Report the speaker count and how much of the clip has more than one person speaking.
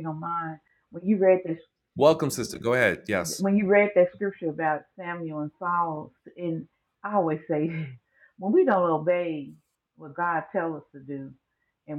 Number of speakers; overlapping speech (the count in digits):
2, no overlap